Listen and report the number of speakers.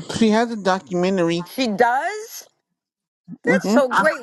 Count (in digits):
2